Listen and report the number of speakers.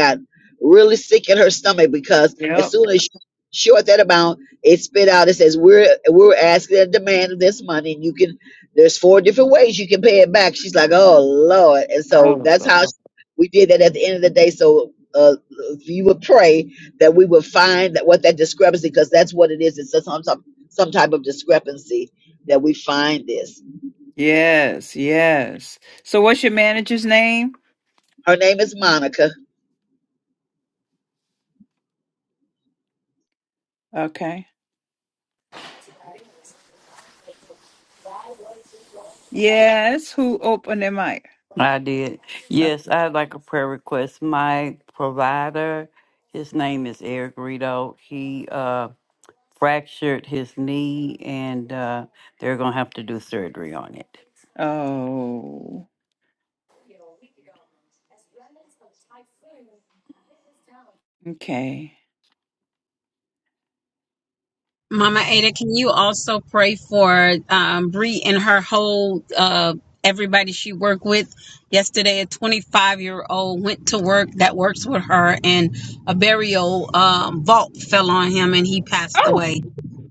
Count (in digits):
4